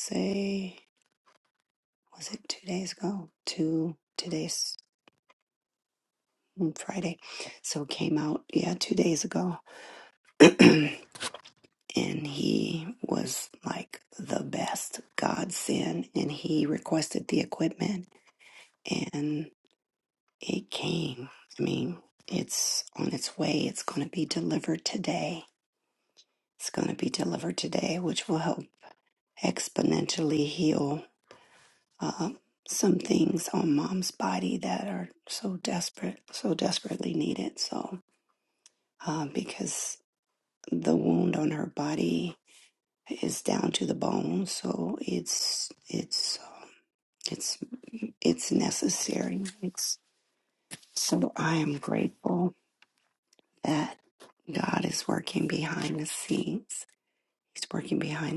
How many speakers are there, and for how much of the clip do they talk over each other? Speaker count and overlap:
one, no overlap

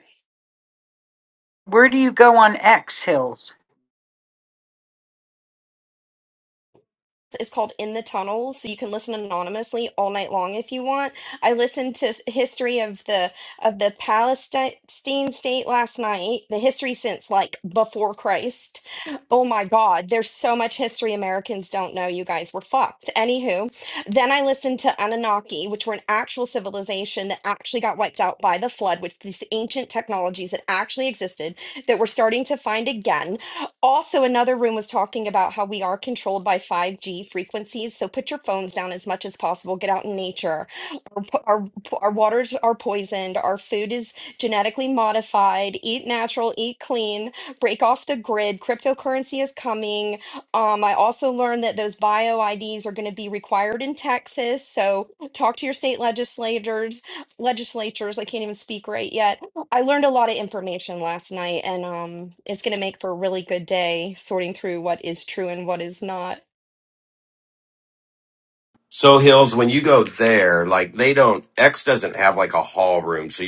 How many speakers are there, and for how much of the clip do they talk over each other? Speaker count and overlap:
three, no overlap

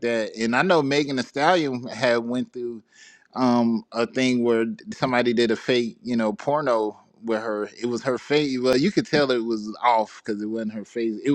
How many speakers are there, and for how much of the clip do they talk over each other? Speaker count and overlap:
one, no overlap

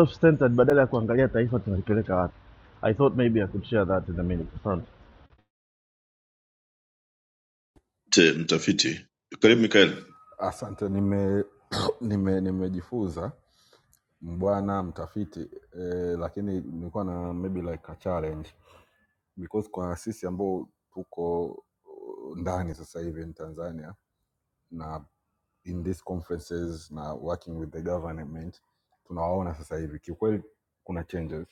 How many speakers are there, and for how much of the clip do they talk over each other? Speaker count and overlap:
three, no overlap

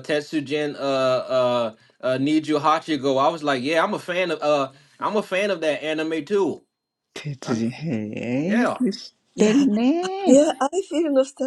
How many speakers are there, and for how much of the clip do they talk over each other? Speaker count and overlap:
three, about 9%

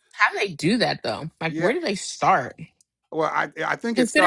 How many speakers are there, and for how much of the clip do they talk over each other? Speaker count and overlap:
two, about 14%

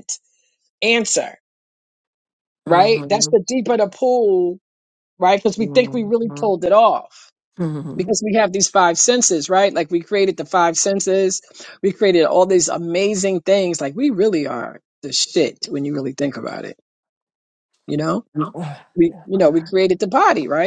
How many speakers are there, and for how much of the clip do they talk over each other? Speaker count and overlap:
two, about 5%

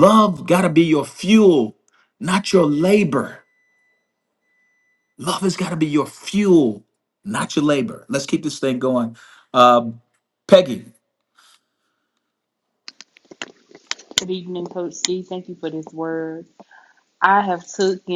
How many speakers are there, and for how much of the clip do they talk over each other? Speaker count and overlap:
two, no overlap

